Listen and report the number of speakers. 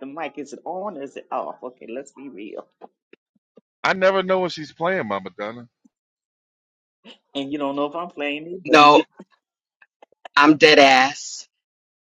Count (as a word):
three